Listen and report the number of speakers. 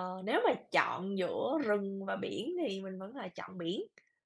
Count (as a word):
one